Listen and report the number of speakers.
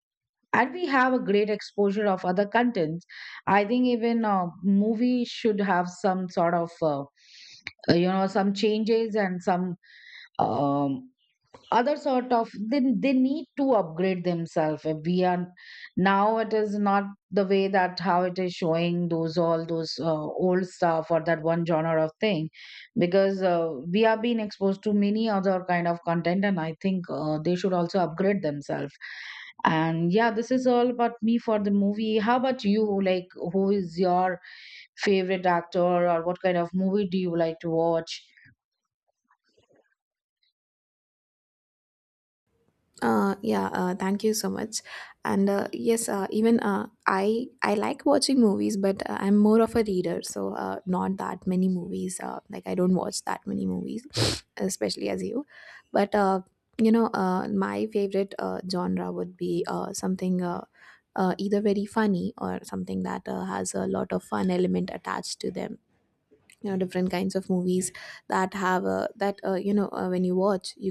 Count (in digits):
2